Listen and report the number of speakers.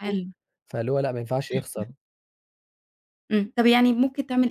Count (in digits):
2